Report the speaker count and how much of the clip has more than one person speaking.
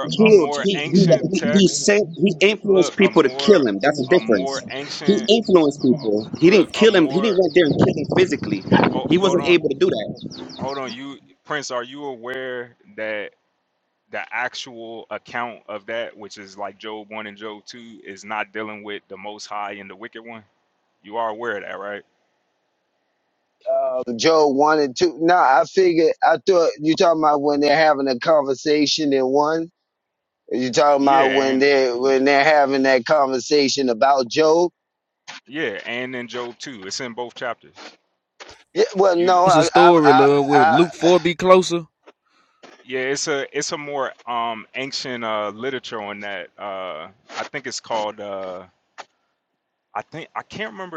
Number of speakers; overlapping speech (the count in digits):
4, about 16%